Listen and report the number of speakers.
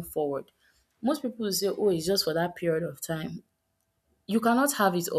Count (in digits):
1